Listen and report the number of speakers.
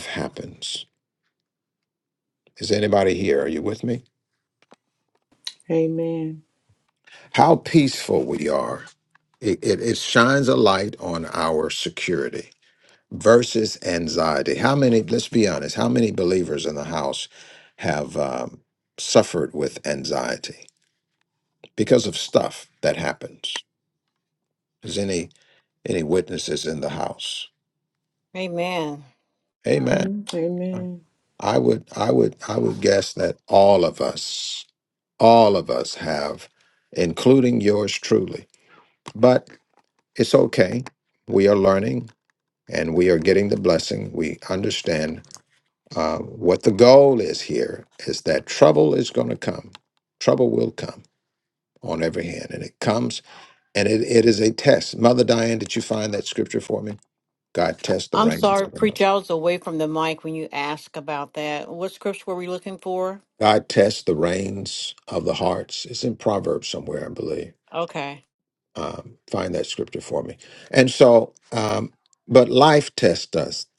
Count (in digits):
3